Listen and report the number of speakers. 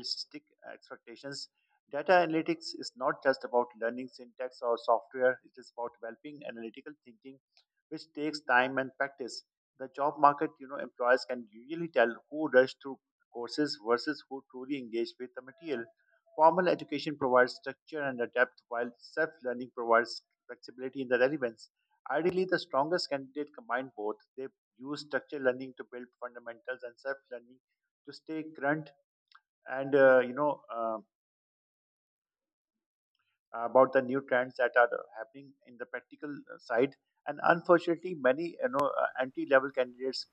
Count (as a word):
one